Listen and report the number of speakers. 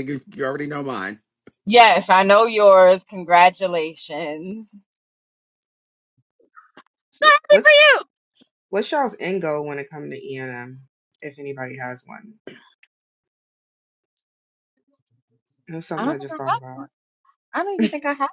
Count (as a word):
three